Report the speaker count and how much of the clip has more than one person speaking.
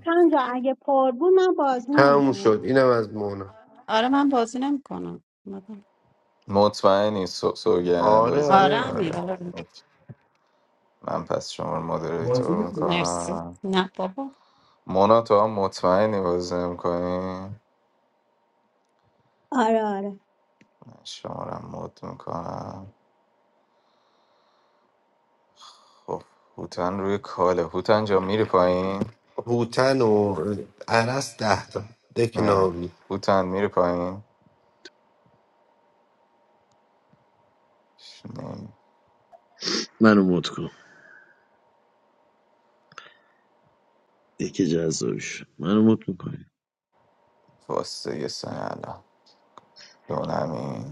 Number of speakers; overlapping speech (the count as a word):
five, about 6%